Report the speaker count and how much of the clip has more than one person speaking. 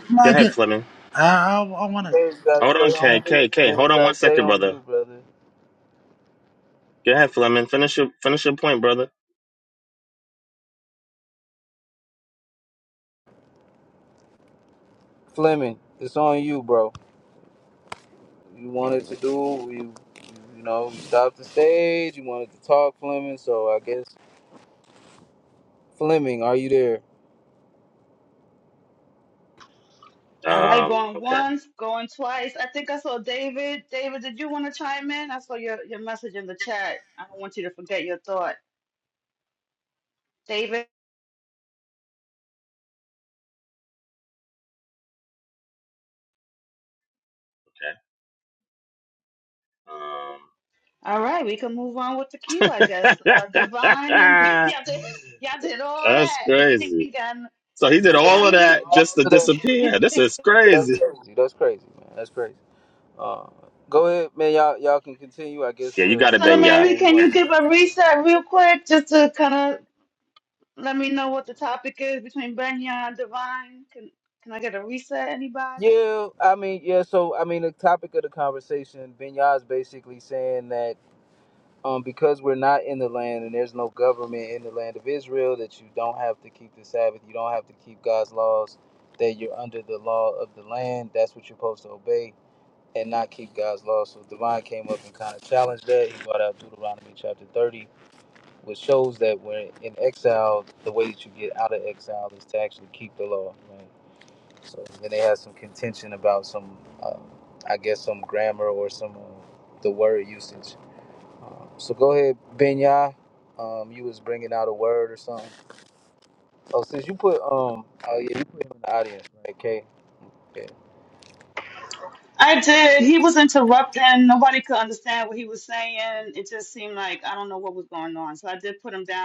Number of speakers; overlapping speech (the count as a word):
four, about 6%